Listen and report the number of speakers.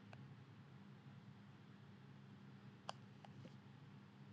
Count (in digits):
0